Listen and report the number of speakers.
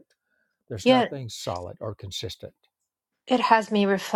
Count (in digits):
2